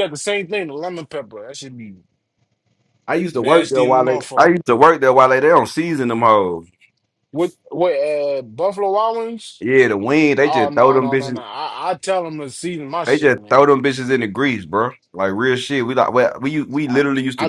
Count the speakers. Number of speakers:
two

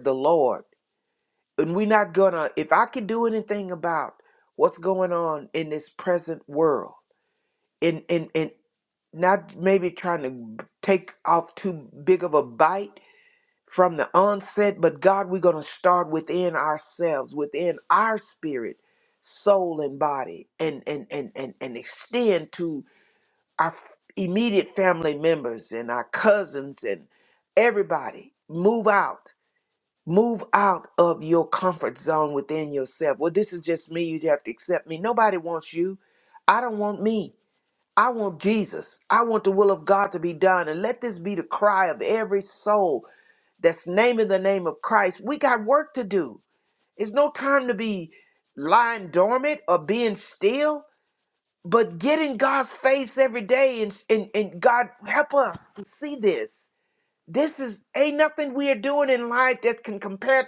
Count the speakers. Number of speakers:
one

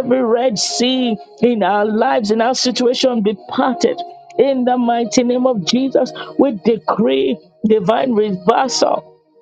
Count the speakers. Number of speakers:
one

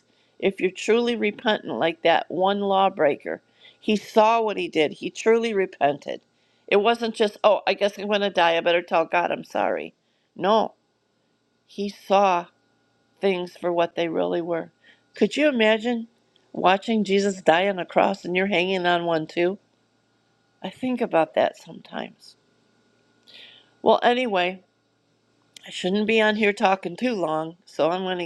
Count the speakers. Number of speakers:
one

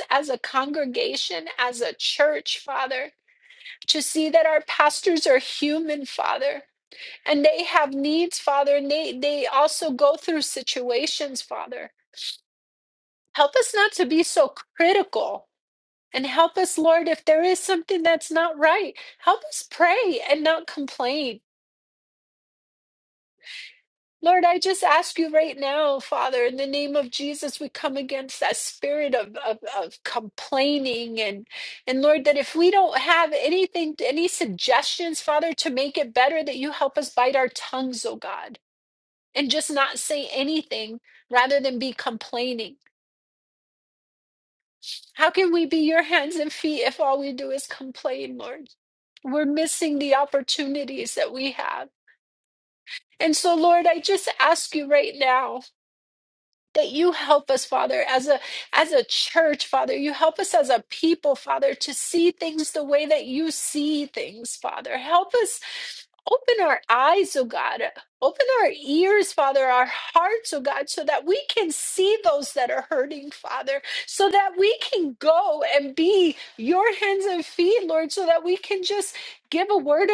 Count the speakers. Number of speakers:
one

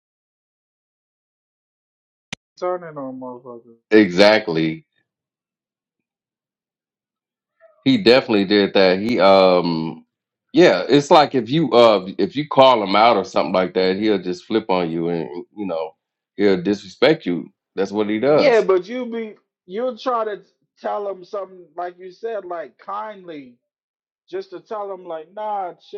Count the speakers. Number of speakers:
two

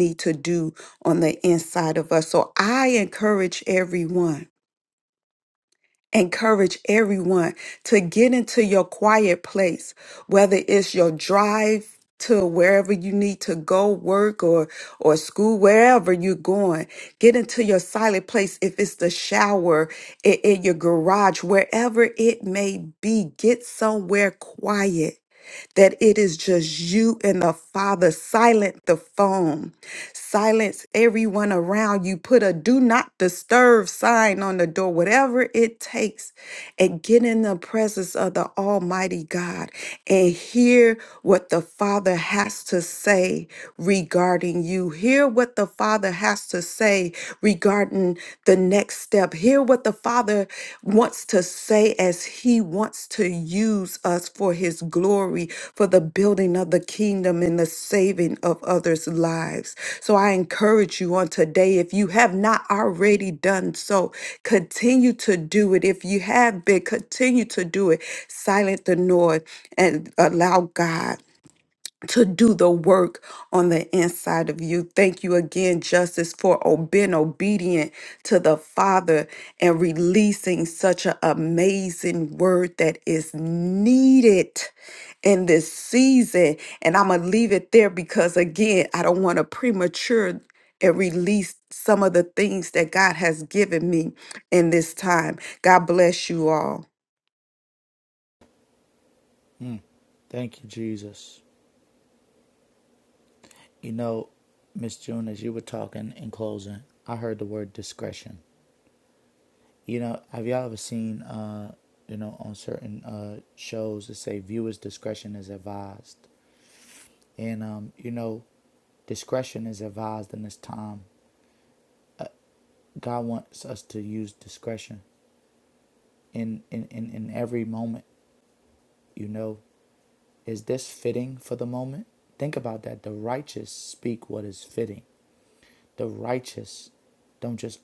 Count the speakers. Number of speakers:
two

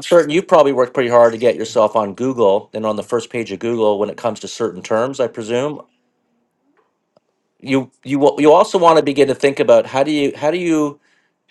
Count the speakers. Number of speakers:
one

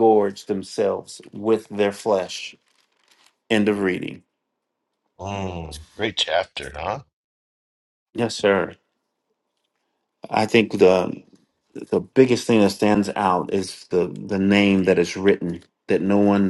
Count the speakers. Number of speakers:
two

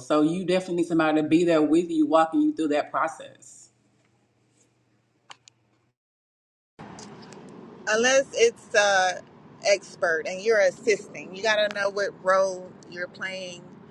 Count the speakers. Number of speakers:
two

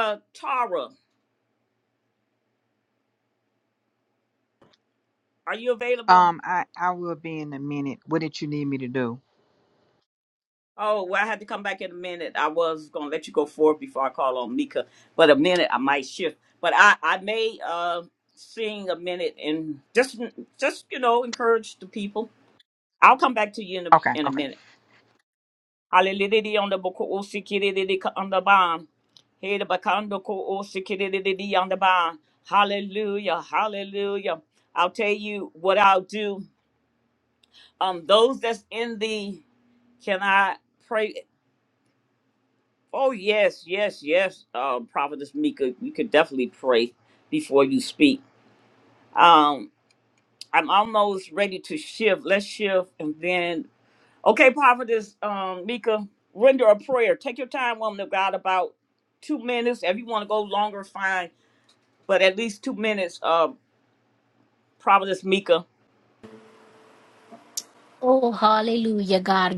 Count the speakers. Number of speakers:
three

